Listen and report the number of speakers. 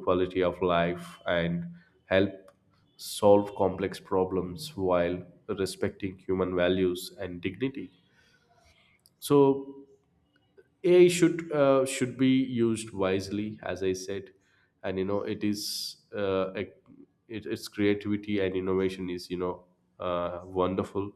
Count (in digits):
1